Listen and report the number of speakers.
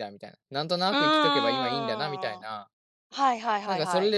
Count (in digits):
2